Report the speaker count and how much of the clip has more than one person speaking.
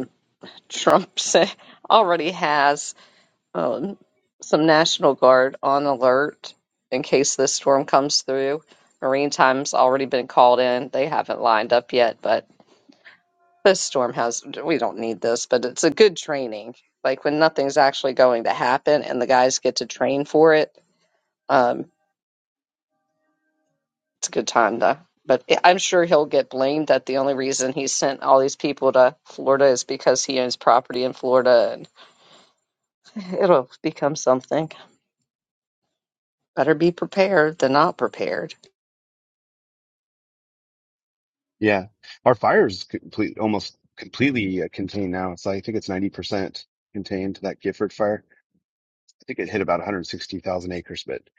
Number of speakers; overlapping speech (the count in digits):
2, no overlap